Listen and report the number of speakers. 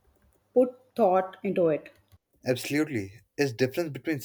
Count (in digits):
2